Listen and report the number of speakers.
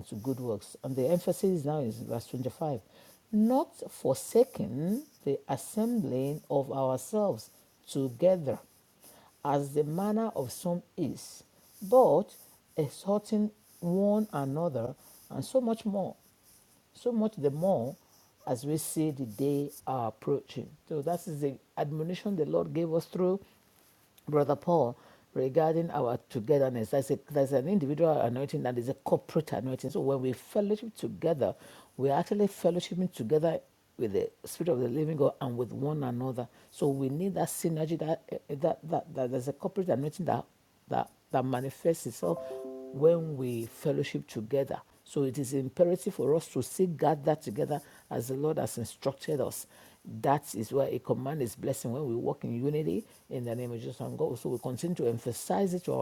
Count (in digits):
1